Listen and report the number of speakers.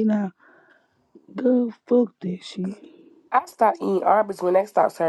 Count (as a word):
two